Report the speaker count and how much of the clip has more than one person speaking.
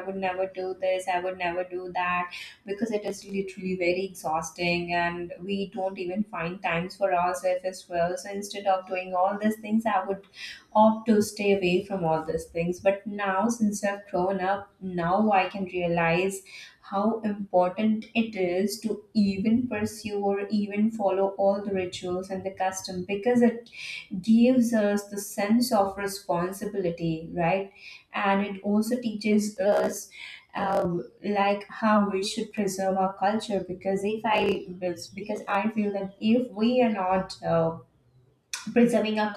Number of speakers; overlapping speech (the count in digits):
1, no overlap